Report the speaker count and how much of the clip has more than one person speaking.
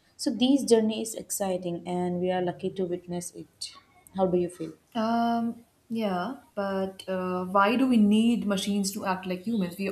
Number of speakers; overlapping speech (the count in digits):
2, no overlap